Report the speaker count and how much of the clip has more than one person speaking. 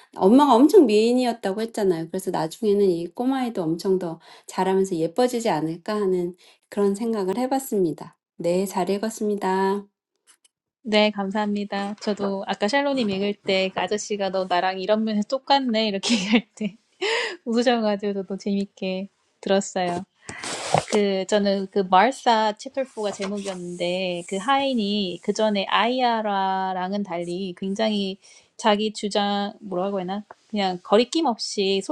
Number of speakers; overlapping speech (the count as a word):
two, no overlap